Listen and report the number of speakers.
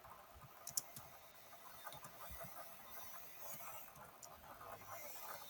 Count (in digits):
0